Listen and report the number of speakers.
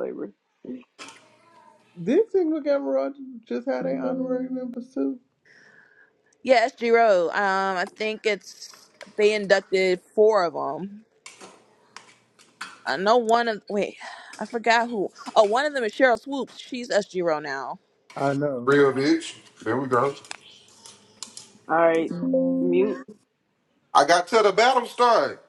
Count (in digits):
4